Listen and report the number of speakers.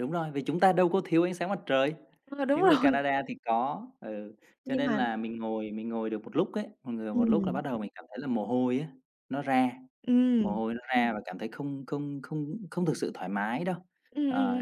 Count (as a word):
two